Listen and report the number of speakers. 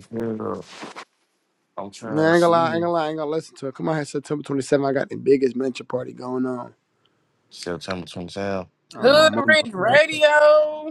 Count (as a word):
three